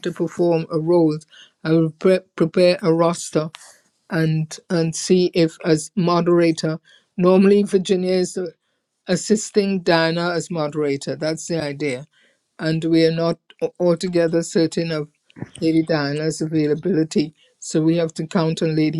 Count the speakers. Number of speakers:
one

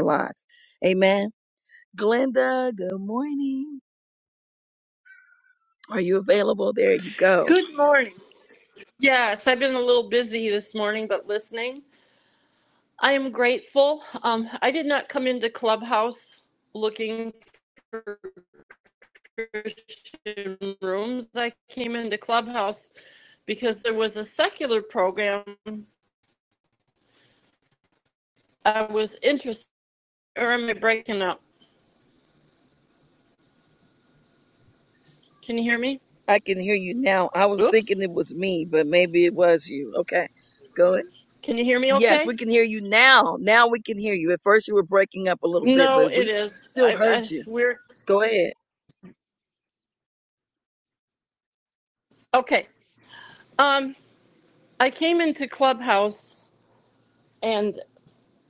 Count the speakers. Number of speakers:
two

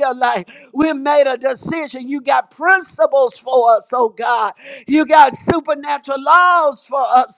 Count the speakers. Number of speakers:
one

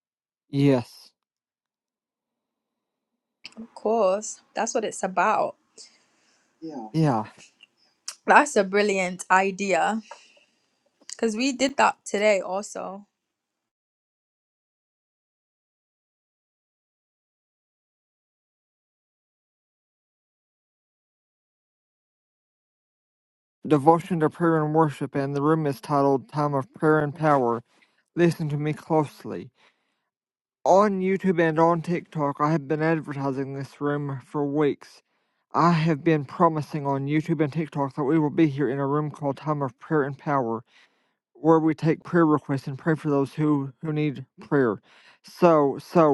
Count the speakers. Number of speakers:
two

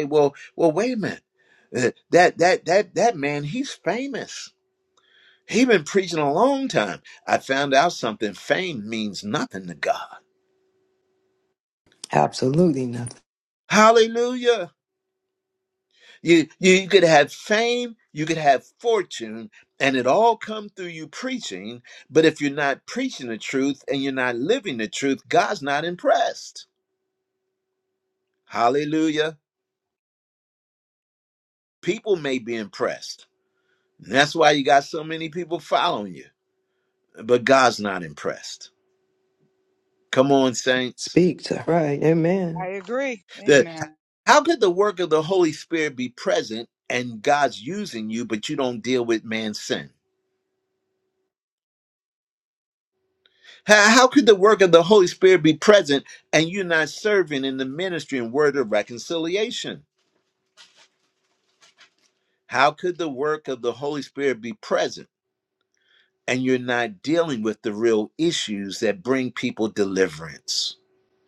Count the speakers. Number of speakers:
three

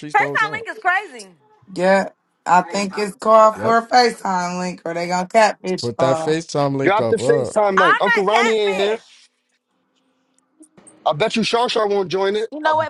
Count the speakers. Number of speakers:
four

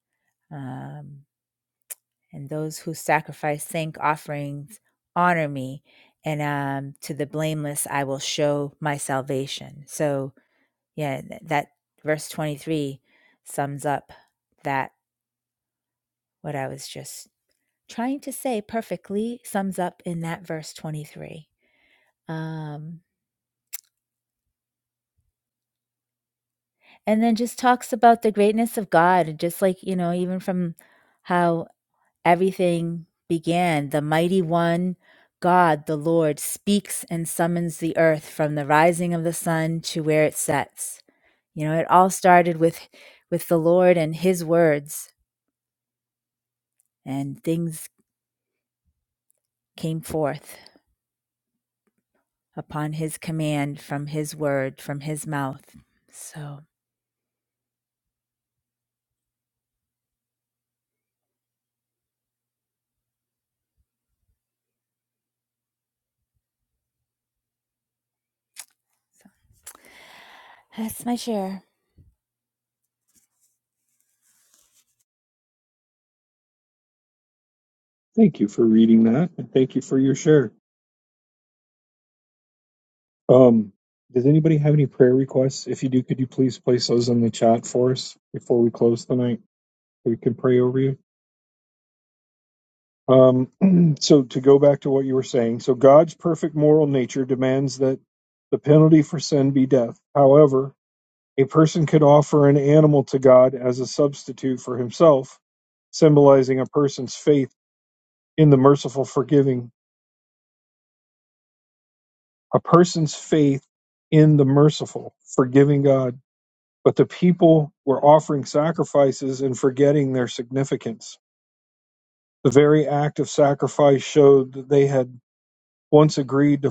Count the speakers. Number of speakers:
two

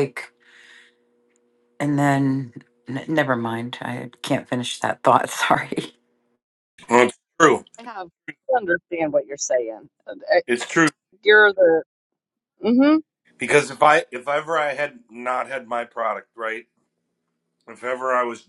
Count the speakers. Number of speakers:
three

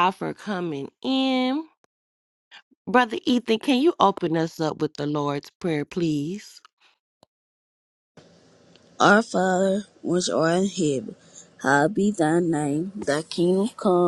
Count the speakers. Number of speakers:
two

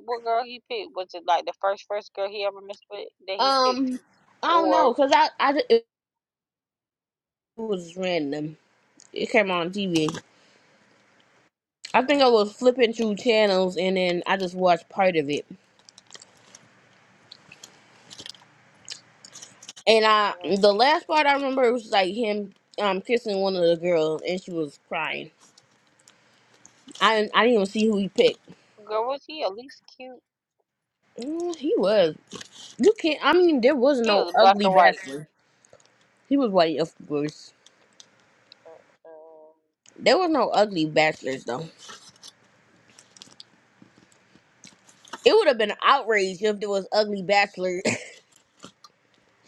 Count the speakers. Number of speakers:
two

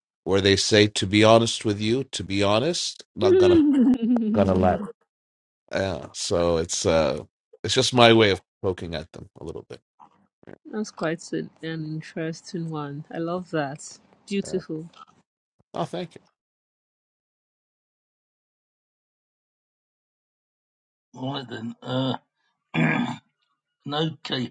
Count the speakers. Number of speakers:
three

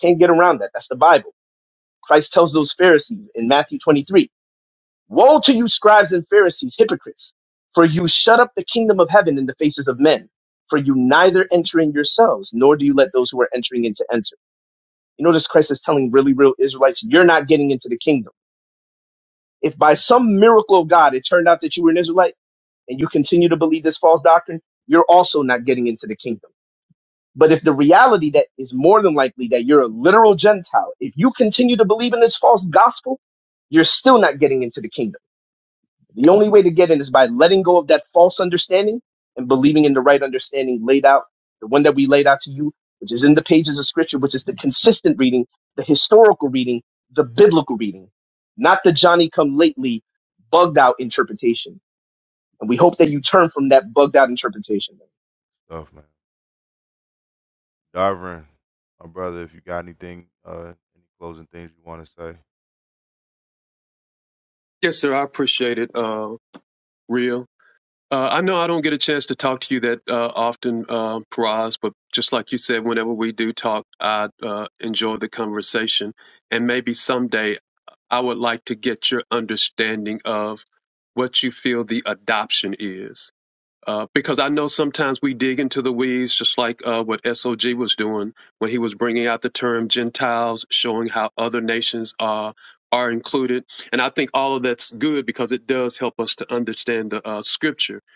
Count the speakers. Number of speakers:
three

